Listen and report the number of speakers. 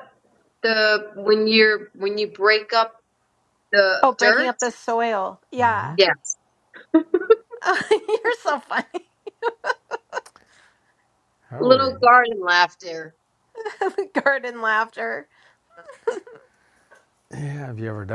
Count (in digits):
3